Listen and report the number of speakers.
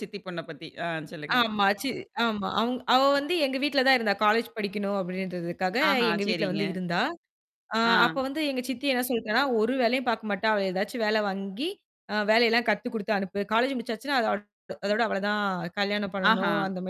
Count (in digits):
2